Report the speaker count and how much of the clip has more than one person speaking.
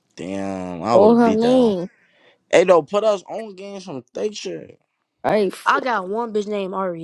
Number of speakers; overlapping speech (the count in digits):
3, about 14%